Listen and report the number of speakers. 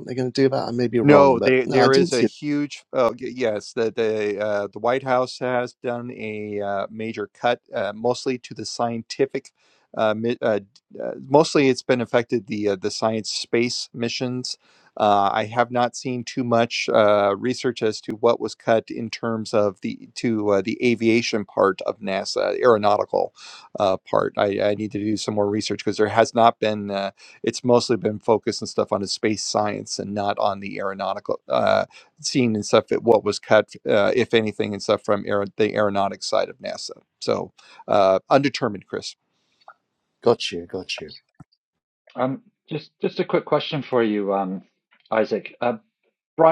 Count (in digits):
3